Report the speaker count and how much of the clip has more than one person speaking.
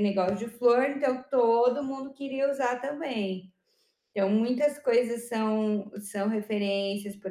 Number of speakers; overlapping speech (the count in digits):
1, no overlap